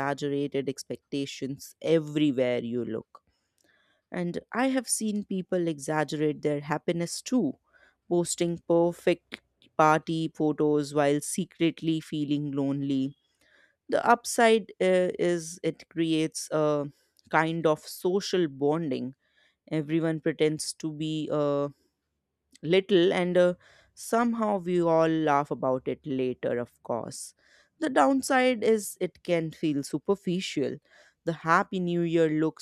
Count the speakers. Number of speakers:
1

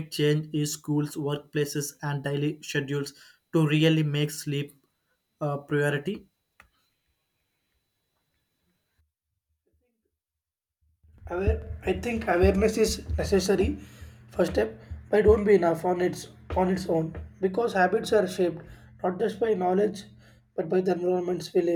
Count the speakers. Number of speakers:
2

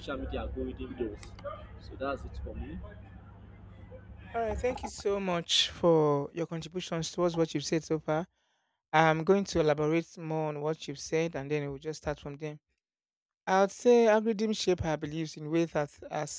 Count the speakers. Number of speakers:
2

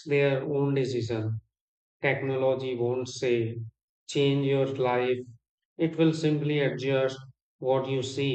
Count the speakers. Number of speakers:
1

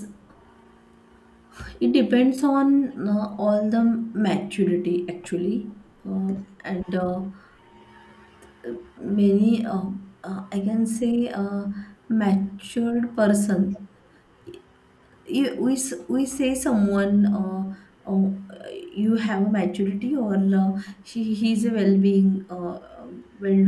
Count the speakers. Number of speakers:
1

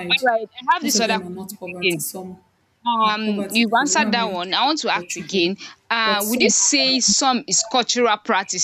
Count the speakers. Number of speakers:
2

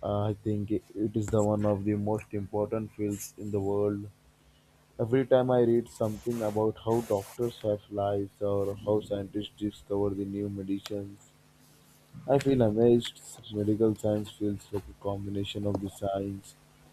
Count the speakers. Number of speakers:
1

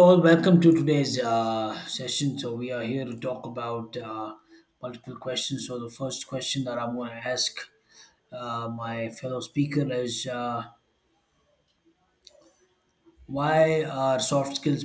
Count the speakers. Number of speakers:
1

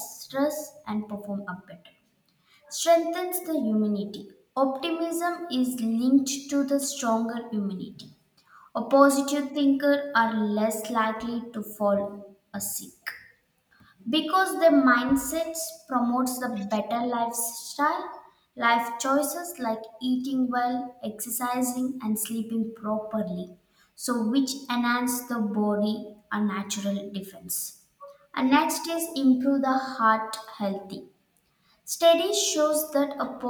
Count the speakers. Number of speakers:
1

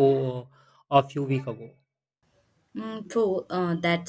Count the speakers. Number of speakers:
2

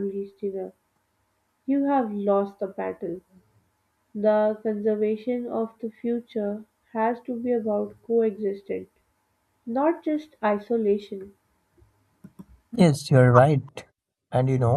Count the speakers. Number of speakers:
2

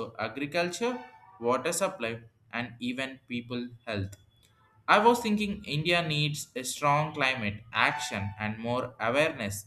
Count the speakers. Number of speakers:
1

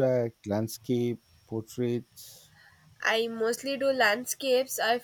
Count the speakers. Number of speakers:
2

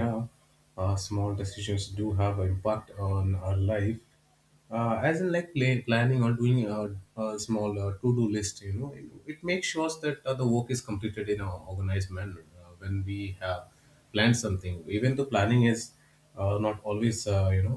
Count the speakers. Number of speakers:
1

